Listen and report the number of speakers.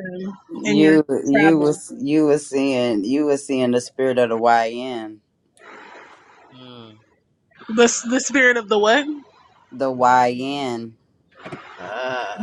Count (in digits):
3